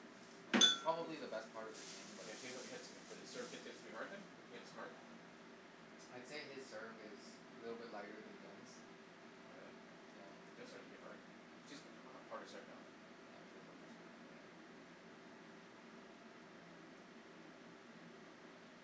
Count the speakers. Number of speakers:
two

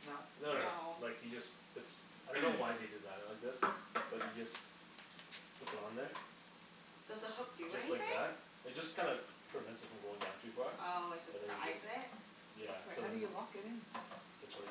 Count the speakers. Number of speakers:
three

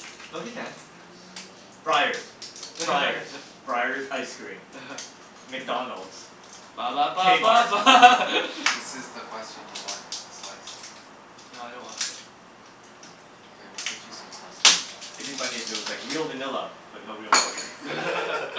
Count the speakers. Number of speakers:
three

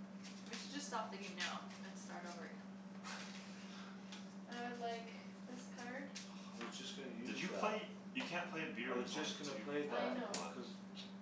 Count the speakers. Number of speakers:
four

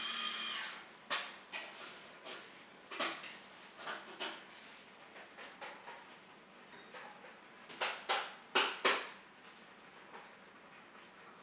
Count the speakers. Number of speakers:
zero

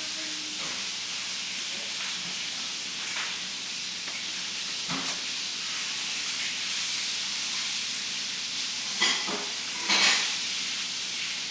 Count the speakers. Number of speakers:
zero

